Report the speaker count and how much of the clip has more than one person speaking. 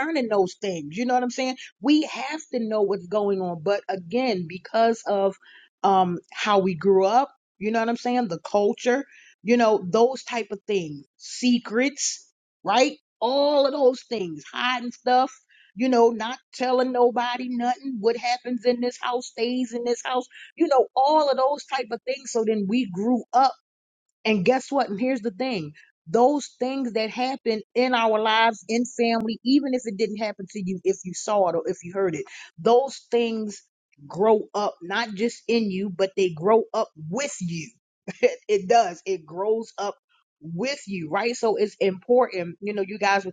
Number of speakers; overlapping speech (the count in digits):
1, no overlap